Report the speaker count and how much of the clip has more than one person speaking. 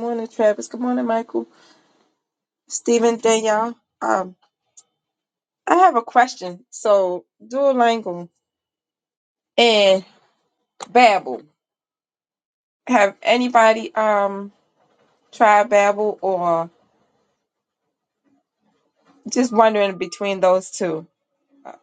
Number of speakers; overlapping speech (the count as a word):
one, no overlap